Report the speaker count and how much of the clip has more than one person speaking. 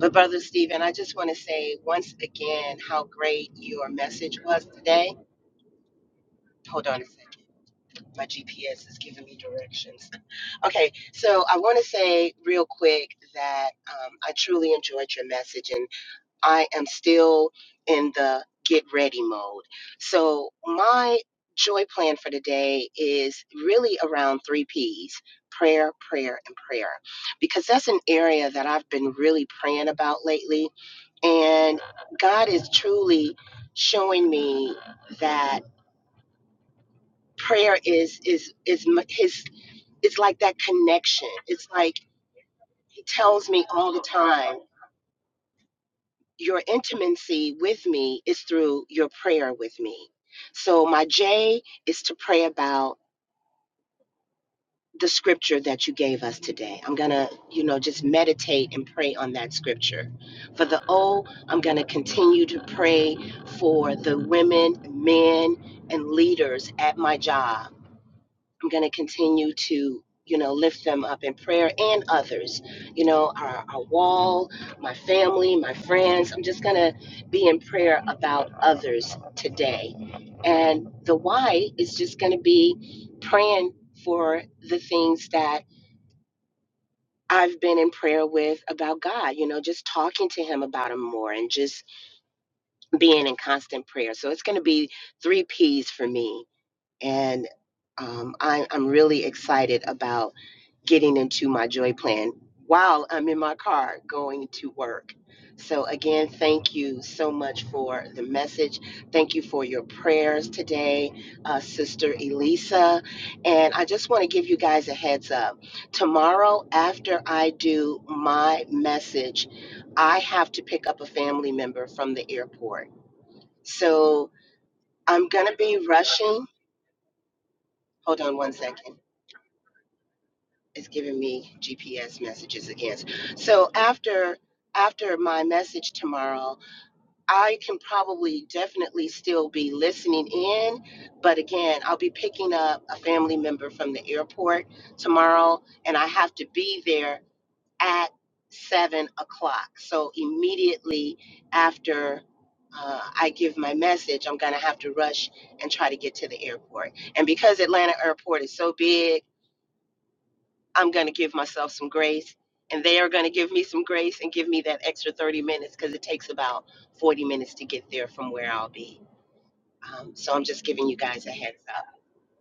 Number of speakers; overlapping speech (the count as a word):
one, no overlap